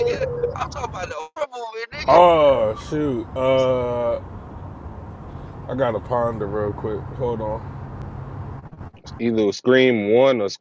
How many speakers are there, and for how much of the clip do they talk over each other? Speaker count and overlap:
3, about 4%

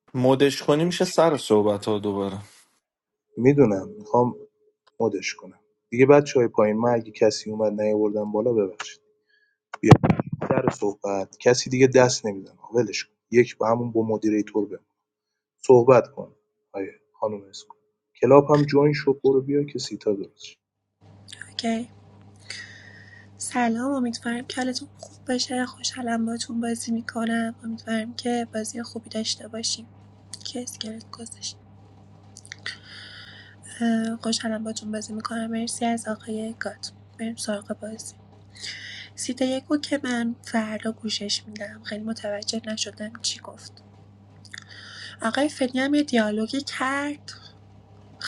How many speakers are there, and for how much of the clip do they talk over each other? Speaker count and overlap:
3, about 1%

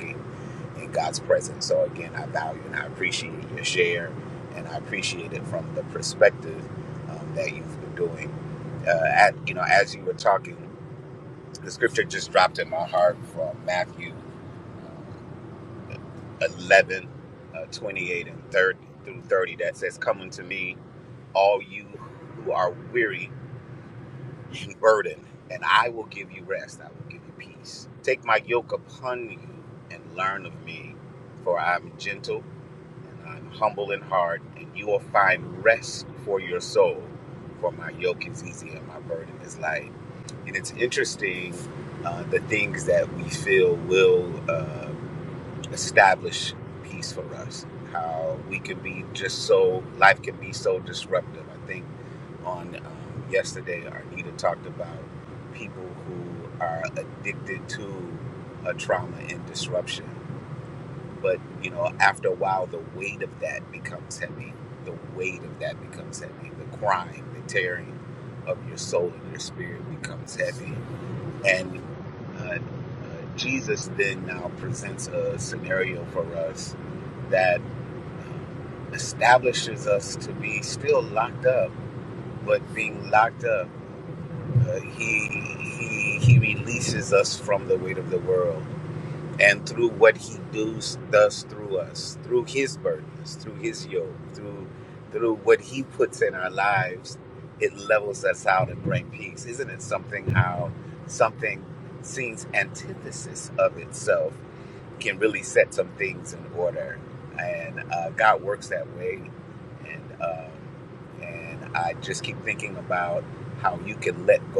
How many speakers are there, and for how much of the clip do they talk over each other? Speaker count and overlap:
1, no overlap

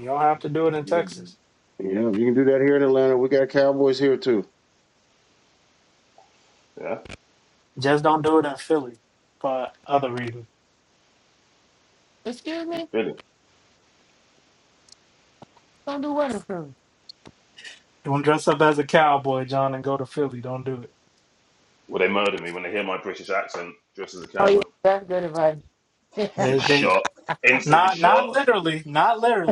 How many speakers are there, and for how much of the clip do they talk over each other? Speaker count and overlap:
4, about 7%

